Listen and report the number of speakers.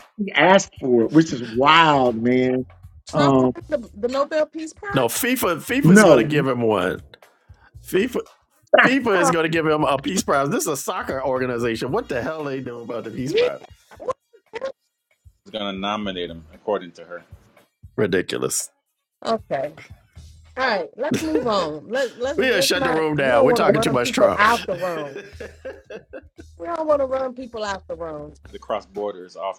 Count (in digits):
4